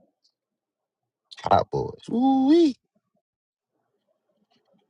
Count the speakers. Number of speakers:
1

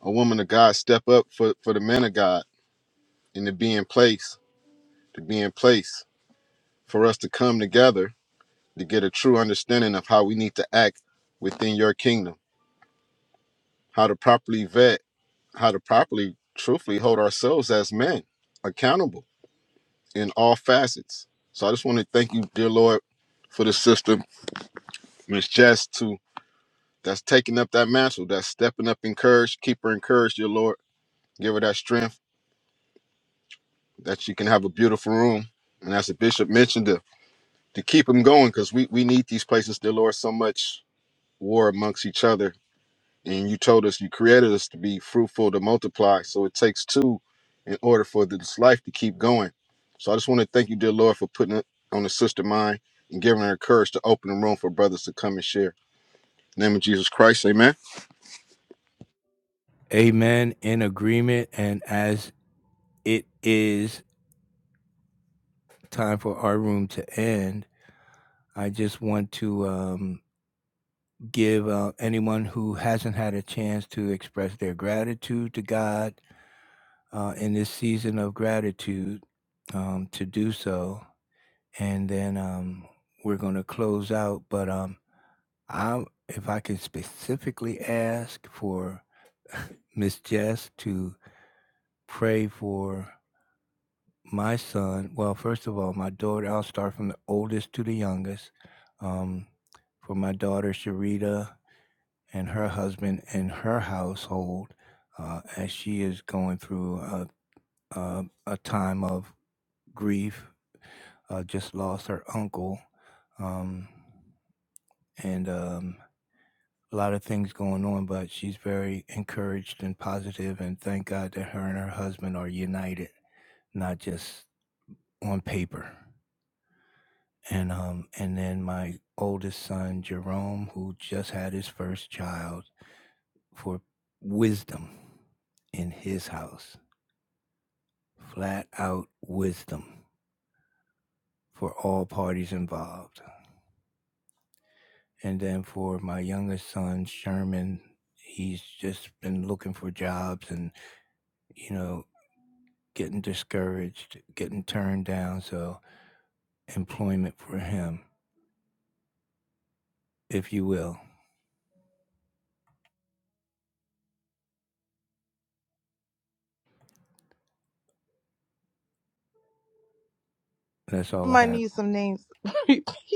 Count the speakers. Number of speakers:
3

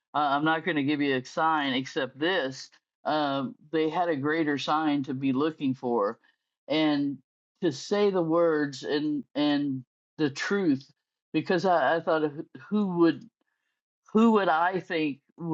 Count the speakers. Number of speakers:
1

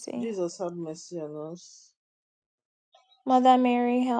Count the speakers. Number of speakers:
2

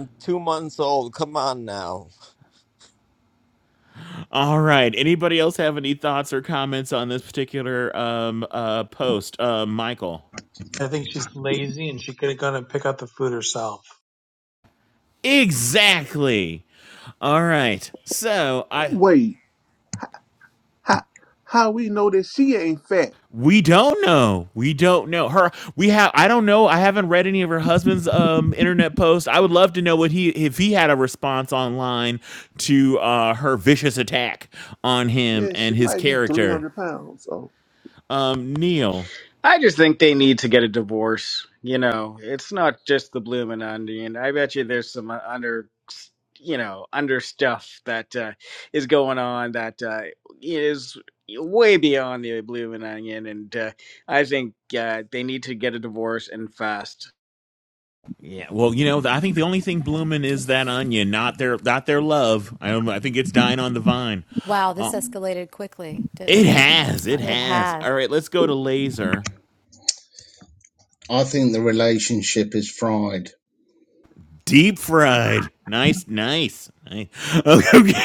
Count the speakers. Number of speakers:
7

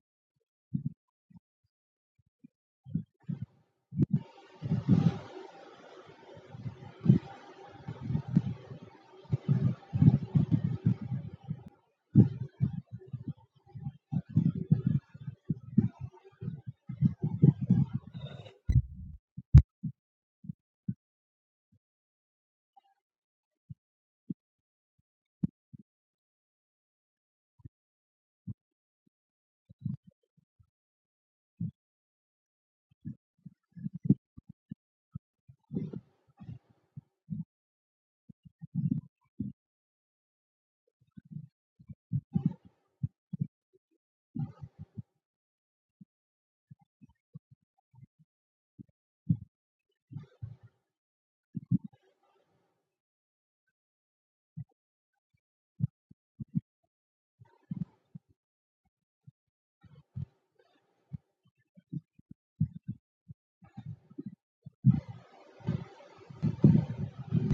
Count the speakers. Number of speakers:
0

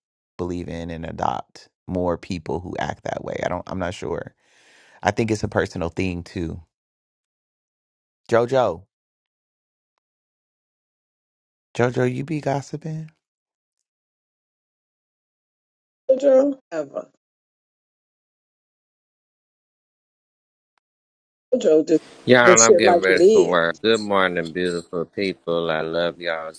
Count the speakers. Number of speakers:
3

